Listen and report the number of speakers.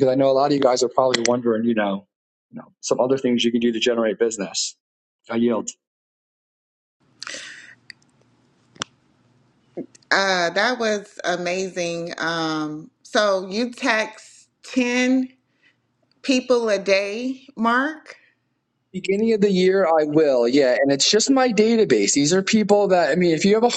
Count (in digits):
2